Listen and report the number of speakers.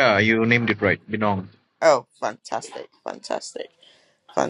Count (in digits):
2